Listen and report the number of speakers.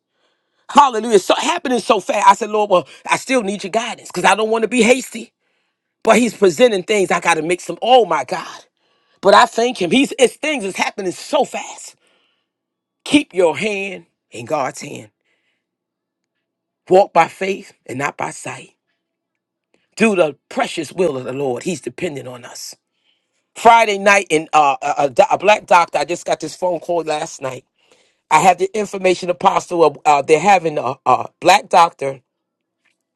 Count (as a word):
one